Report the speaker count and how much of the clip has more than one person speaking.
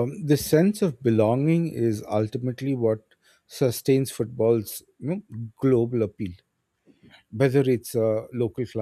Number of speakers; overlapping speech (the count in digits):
1, no overlap